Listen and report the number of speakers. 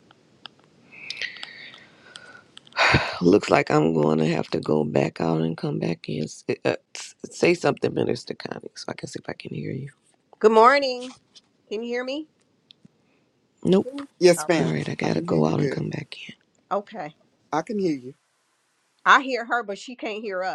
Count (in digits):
3